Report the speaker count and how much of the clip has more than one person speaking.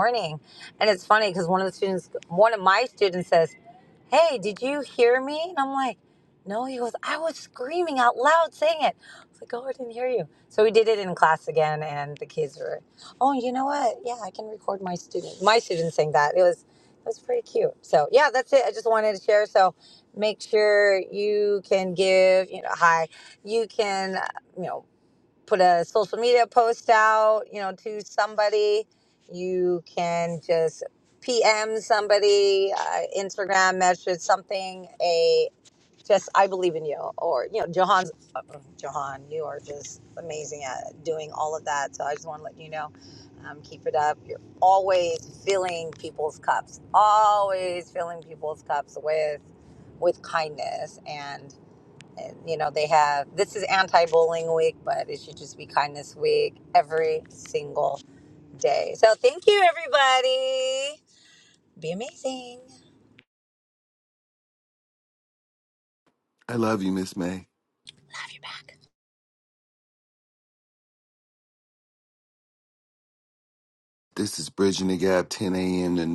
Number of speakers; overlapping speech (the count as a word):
two, no overlap